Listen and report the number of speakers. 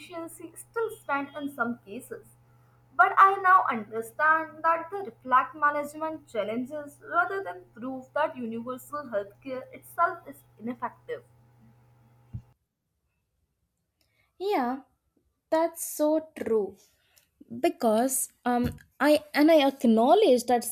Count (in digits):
2